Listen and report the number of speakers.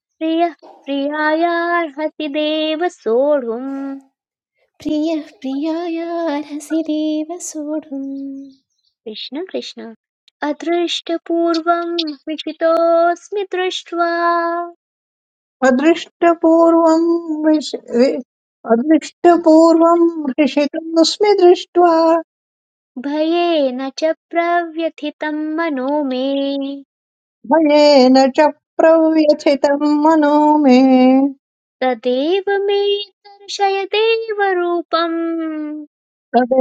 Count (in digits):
3